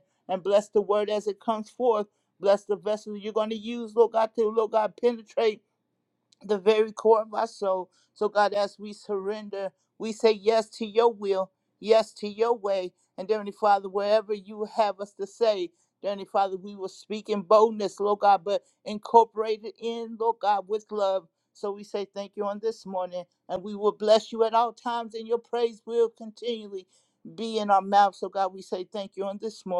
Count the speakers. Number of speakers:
1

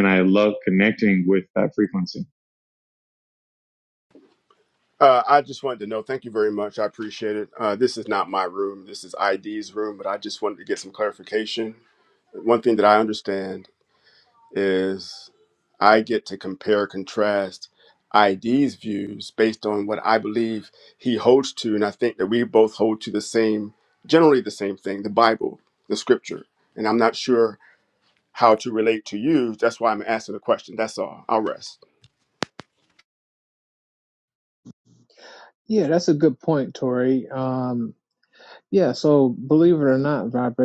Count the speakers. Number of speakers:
3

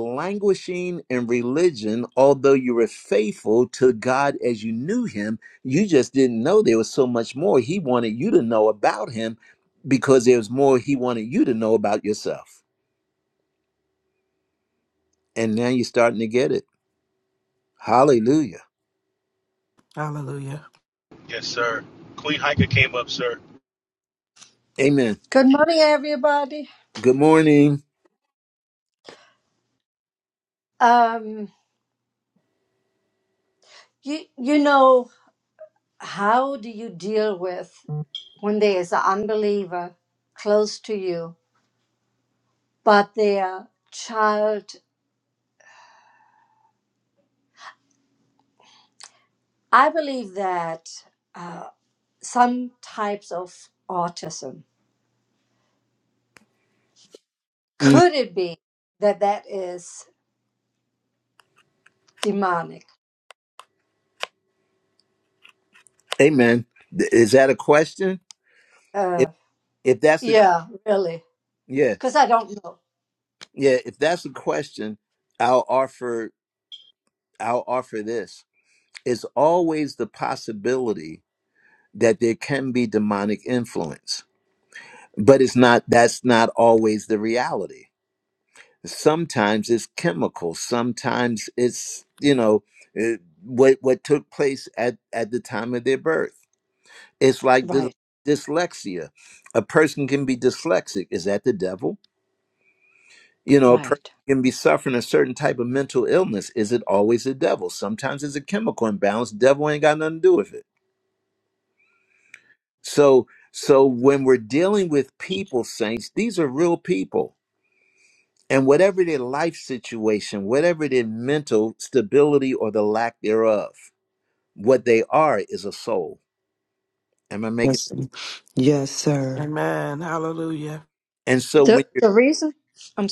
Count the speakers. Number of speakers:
5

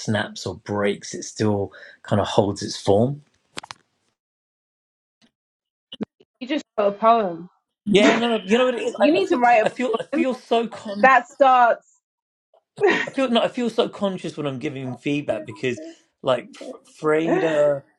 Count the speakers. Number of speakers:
2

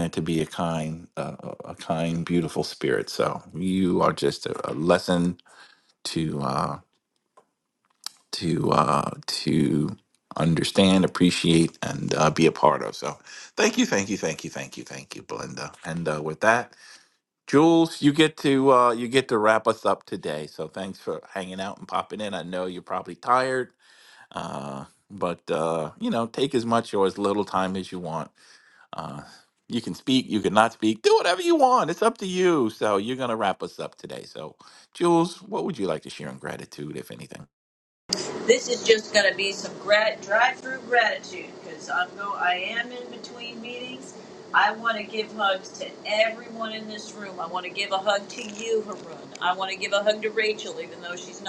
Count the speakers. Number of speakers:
2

